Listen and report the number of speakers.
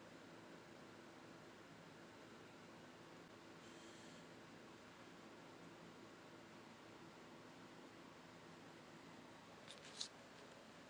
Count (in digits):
0